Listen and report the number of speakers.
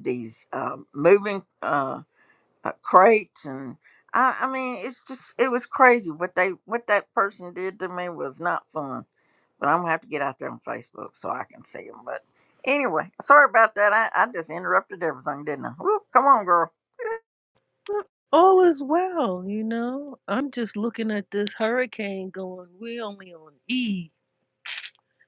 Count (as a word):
two